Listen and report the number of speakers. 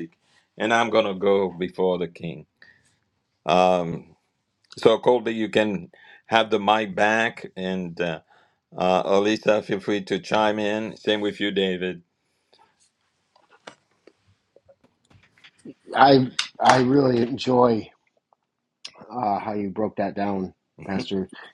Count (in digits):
2